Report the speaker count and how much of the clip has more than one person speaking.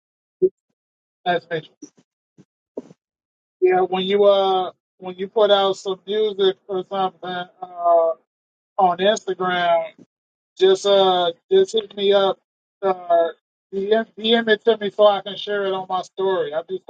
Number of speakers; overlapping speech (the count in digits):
1, no overlap